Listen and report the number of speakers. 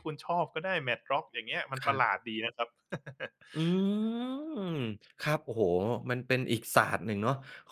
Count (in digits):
2